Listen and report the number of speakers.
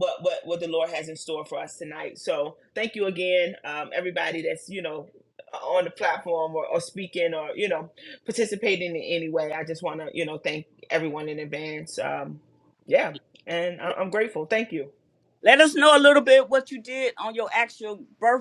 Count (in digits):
2